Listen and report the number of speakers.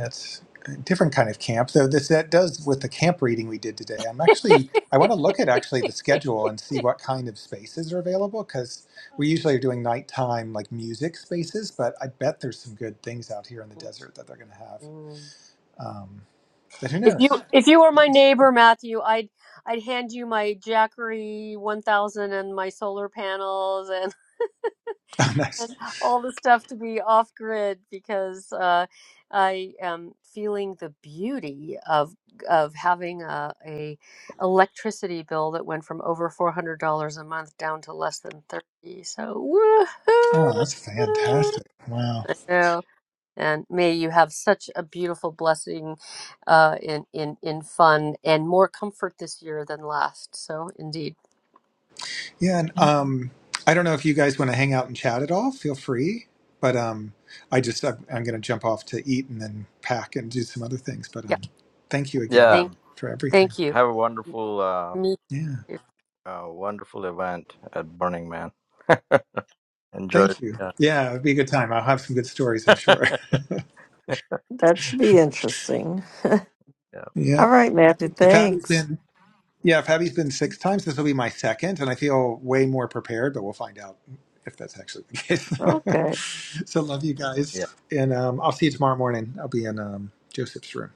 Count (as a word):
four